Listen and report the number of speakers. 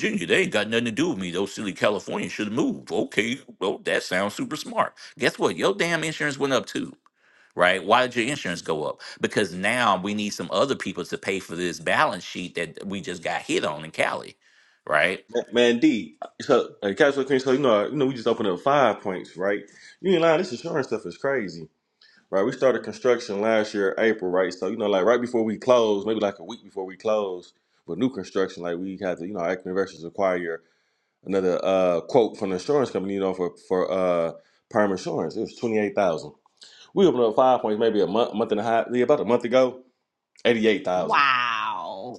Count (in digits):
3